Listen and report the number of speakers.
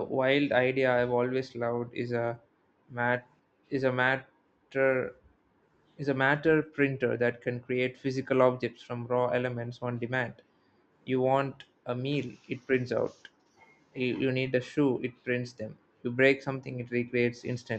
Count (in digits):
1